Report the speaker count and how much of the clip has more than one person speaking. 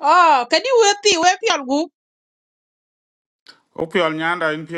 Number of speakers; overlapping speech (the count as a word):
two, no overlap